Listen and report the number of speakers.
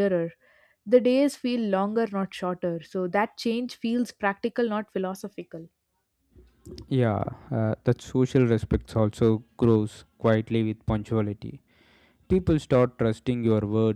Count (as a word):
two